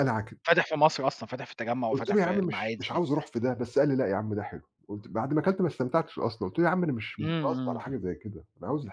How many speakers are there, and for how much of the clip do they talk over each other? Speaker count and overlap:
2, about 15%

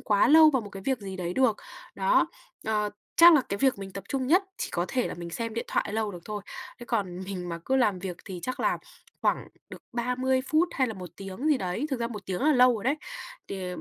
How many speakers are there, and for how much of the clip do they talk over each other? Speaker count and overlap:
1, no overlap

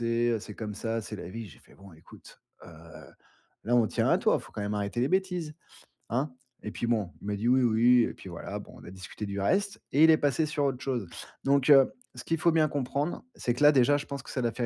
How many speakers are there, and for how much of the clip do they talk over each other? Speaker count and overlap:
1, no overlap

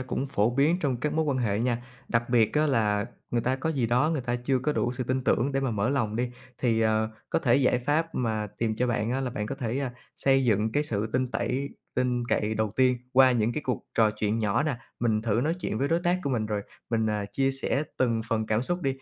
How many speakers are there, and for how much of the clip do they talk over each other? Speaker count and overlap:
1, no overlap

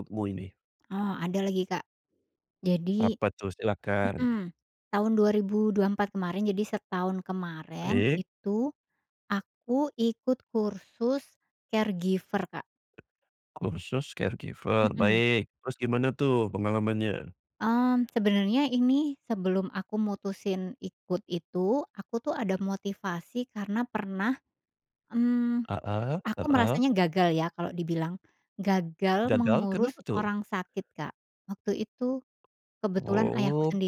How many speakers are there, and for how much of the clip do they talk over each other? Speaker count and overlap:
2, about 11%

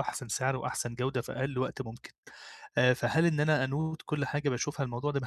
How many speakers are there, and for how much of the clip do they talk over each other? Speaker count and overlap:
1, no overlap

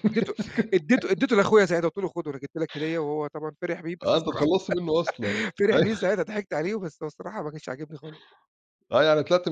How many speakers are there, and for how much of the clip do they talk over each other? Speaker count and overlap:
2, about 7%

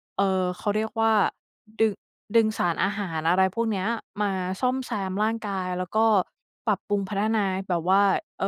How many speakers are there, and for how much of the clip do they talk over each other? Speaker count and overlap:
1, no overlap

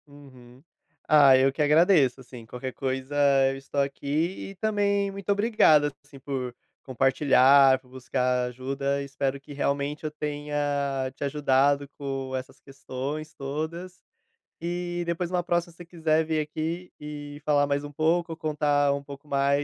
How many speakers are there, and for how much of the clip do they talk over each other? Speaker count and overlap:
1, no overlap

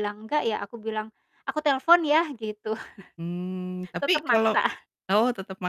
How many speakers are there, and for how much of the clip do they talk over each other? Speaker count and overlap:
2, about 10%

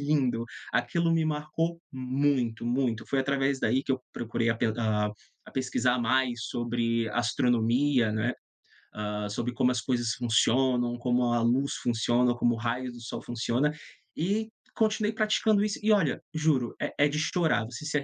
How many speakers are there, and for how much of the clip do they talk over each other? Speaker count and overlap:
1, no overlap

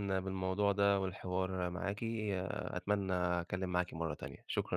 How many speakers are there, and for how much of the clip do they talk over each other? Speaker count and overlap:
1, no overlap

